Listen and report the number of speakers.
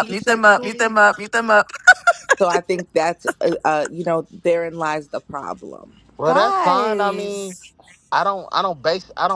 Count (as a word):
three